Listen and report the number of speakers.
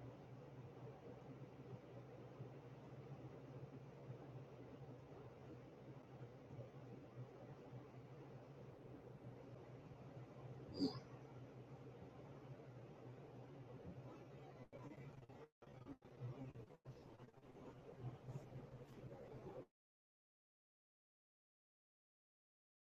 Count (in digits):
0